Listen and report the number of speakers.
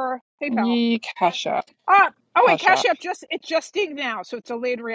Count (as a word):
two